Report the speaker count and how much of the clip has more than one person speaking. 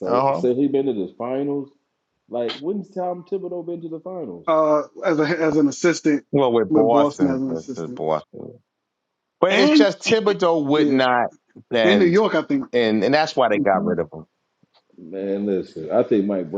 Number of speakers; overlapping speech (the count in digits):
3, about 19%